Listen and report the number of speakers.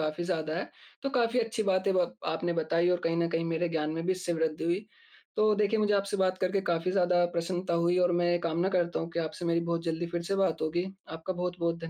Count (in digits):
1